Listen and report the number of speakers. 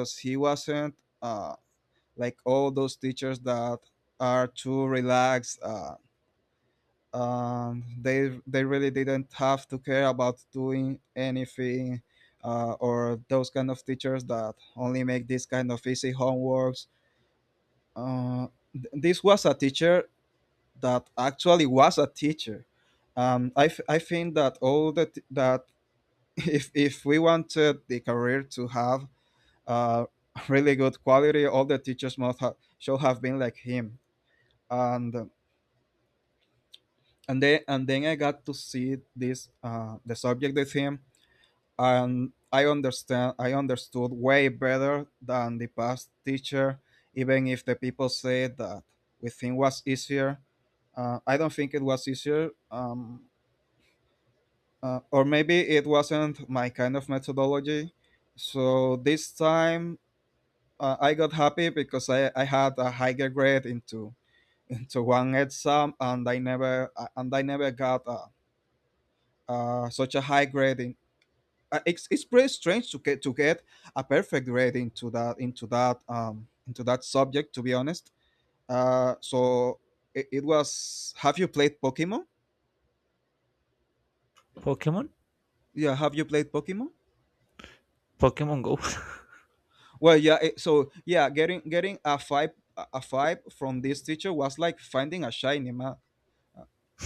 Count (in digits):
2